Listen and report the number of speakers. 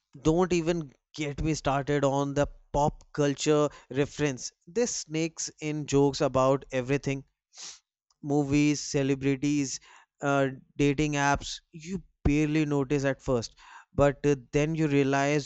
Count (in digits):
1